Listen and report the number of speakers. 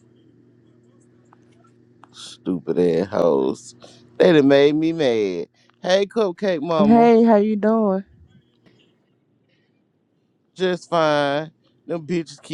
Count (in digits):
2